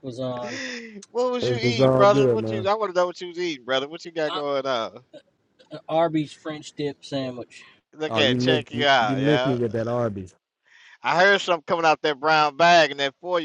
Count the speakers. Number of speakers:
three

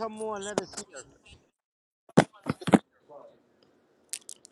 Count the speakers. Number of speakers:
one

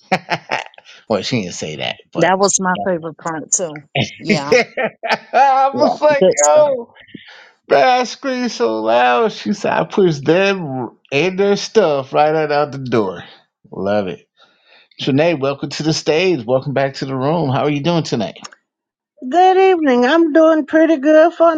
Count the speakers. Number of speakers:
three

